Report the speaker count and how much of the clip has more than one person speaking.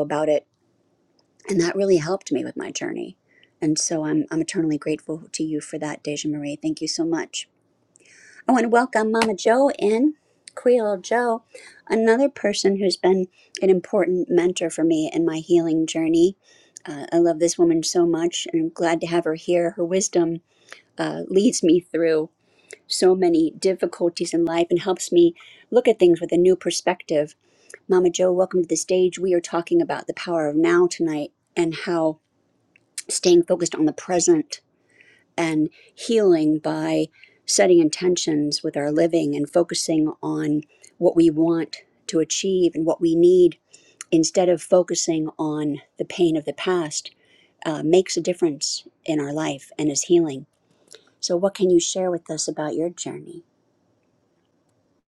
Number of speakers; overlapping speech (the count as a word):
one, no overlap